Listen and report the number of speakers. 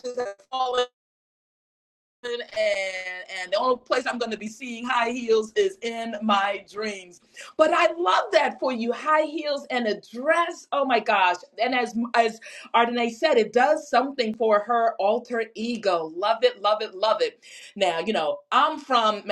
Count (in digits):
1